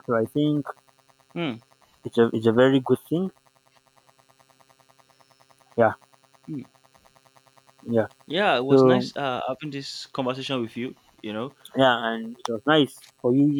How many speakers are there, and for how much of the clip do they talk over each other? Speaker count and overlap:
two, about 3%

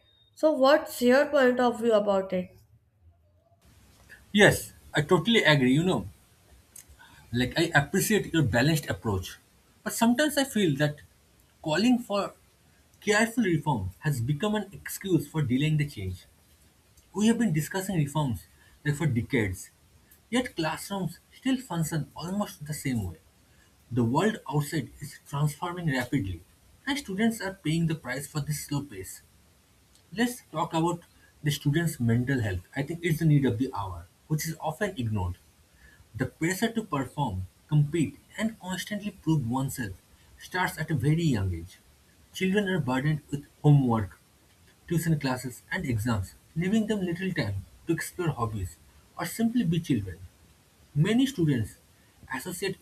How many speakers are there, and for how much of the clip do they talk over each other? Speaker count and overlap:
two, no overlap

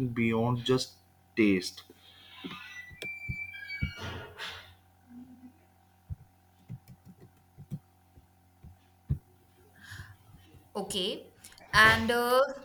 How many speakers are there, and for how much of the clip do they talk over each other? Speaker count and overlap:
two, no overlap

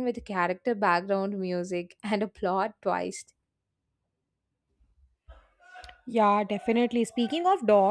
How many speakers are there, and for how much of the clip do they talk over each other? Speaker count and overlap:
two, no overlap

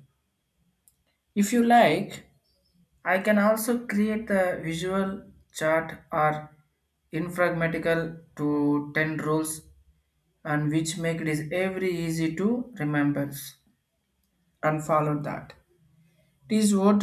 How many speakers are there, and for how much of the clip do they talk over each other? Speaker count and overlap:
one, no overlap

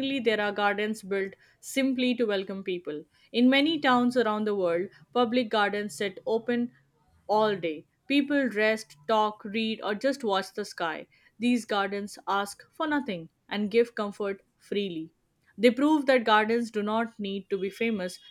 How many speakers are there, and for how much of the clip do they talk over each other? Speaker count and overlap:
one, no overlap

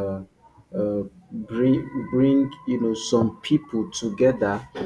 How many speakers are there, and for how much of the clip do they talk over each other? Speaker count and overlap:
one, no overlap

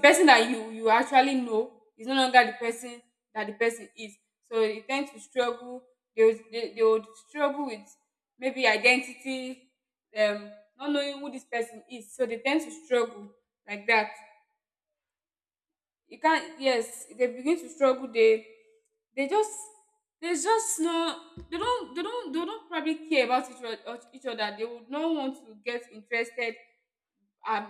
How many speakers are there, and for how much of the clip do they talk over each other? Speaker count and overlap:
one, no overlap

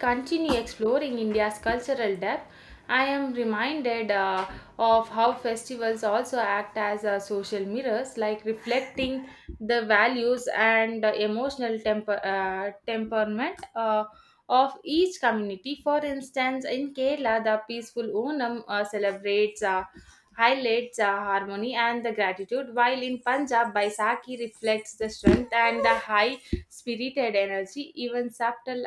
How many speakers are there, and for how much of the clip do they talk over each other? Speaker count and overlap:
one, no overlap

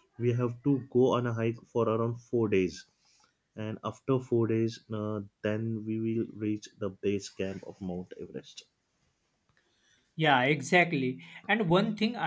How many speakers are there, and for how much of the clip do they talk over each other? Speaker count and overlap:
two, no overlap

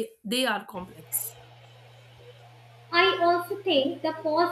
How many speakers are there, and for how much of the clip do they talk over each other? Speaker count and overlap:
two, no overlap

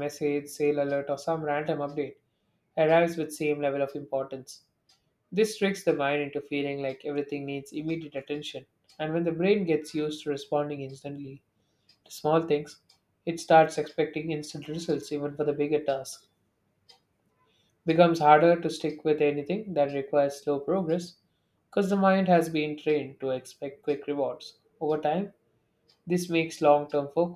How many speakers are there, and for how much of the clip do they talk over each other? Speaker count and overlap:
one, no overlap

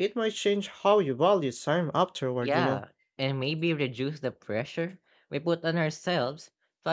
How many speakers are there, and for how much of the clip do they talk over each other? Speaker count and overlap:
two, about 5%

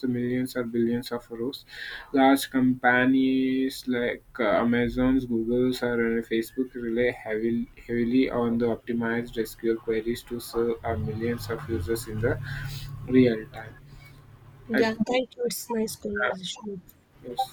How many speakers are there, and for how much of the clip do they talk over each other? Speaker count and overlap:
two, about 2%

